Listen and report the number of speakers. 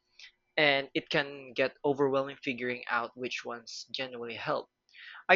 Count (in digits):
1